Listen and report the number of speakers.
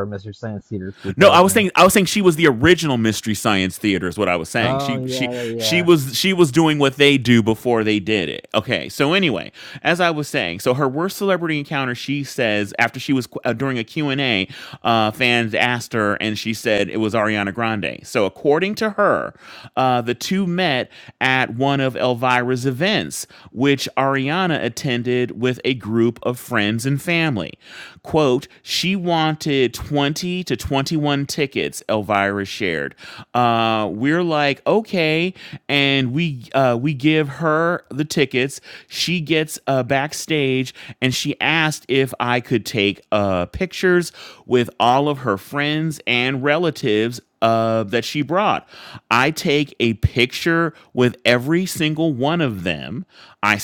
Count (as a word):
two